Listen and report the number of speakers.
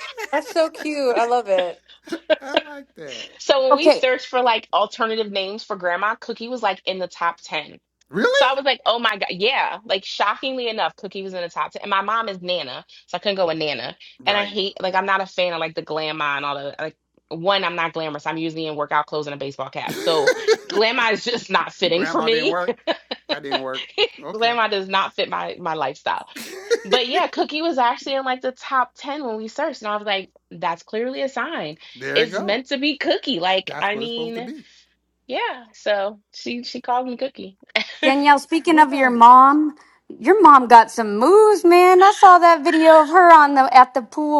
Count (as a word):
four